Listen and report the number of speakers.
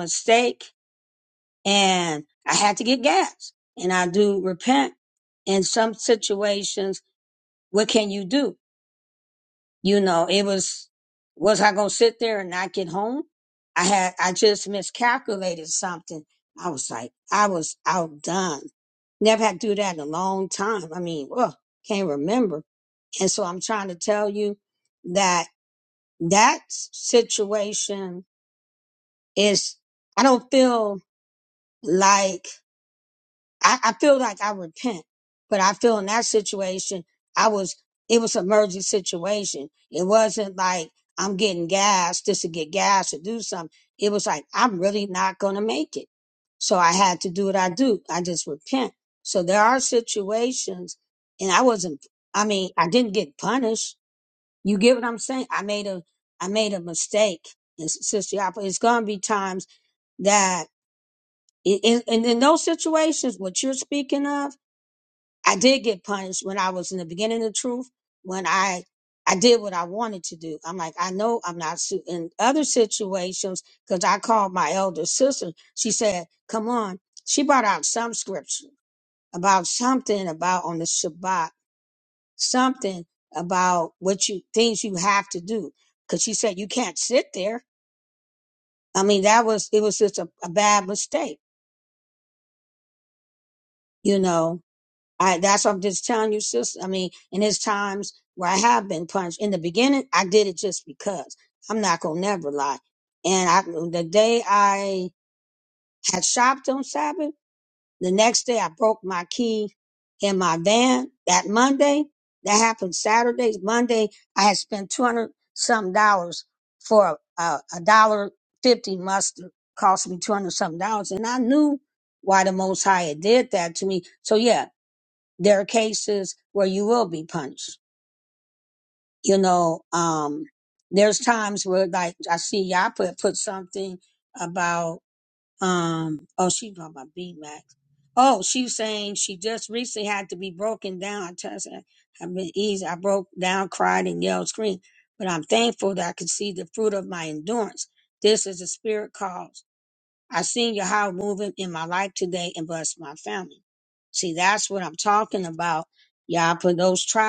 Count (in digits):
1